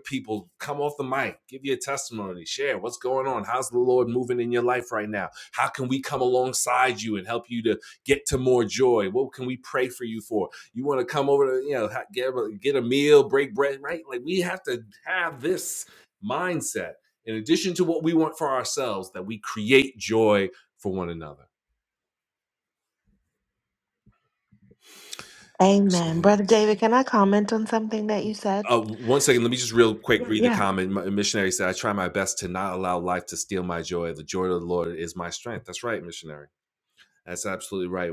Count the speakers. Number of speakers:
2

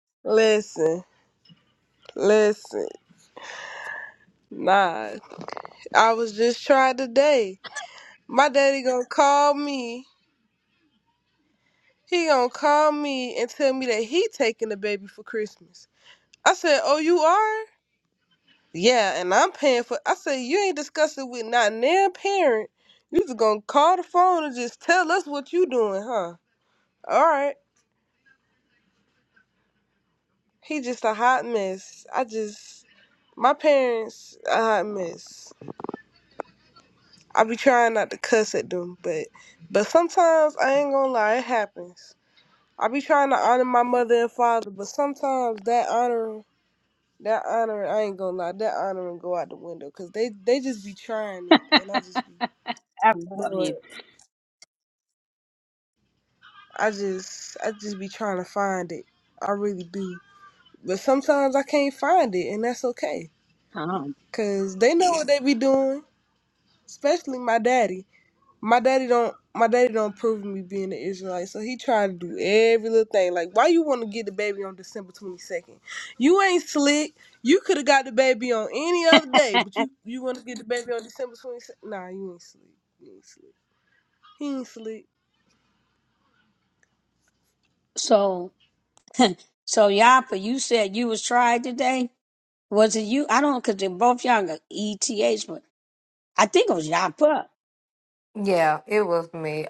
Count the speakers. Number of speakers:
3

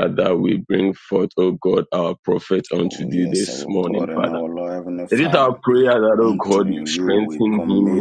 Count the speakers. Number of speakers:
2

